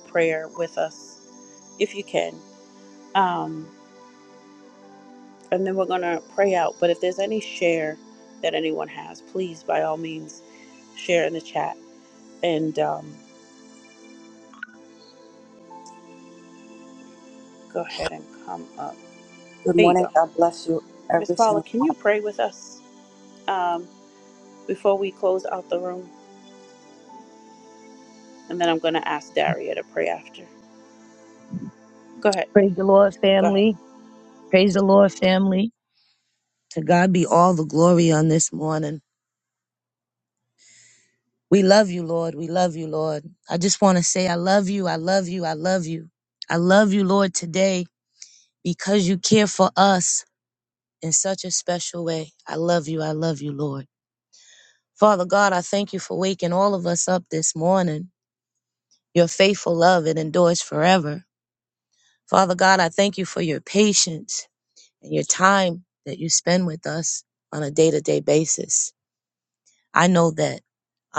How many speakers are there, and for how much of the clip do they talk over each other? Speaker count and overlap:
3, about 2%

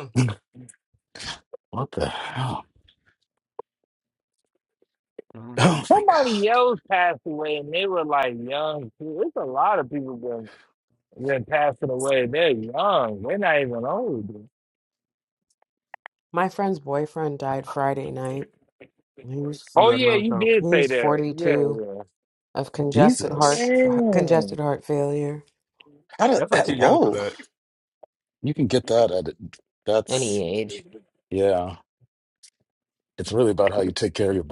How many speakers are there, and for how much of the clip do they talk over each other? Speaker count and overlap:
4, about 15%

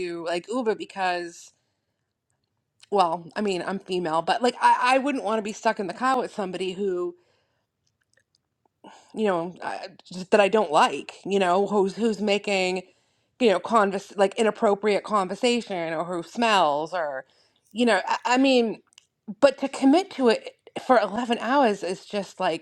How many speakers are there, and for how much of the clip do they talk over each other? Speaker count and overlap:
1, no overlap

